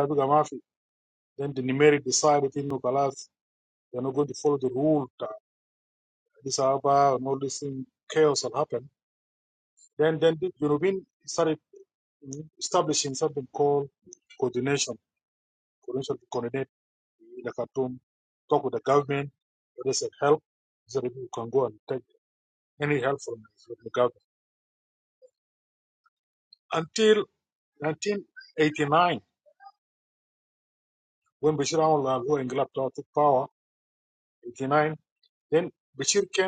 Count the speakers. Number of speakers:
one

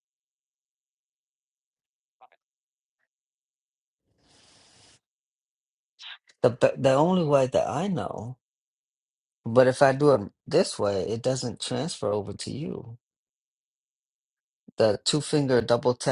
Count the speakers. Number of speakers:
one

